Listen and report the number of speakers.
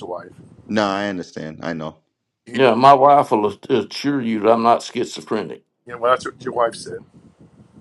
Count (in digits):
3